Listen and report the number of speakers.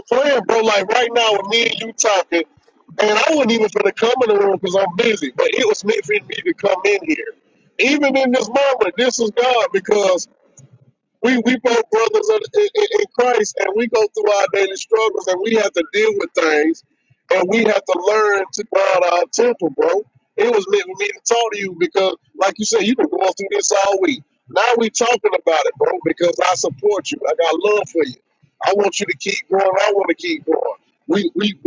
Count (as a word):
one